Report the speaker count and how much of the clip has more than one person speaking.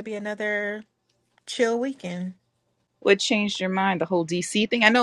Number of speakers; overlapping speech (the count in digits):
2, no overlap